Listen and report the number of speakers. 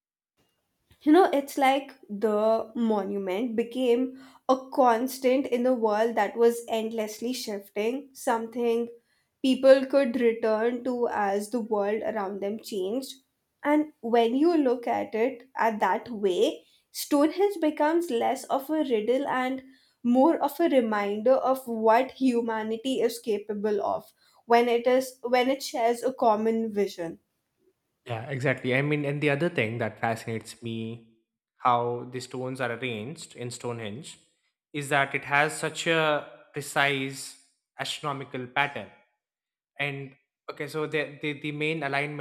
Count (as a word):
two